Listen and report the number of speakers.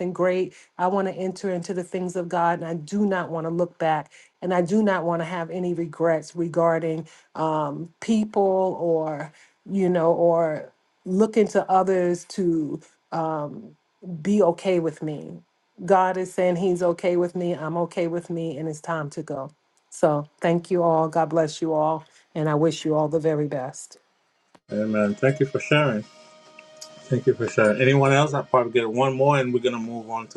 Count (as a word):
two